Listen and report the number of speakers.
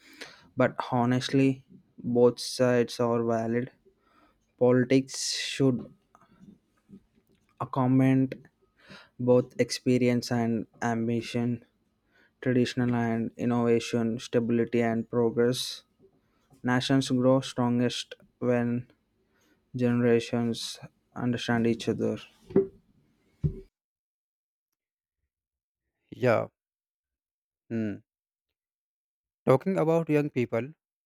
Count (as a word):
two